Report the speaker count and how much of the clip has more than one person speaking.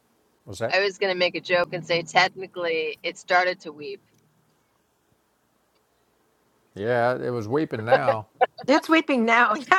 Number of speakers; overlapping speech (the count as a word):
three, about 1%